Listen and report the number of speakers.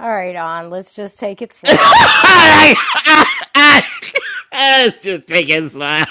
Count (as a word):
two